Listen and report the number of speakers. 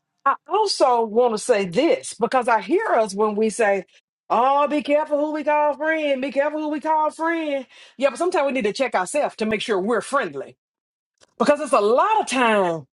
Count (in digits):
1